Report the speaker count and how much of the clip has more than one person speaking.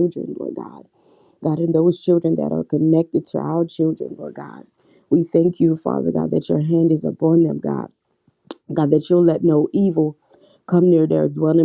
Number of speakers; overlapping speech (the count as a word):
one, no overlap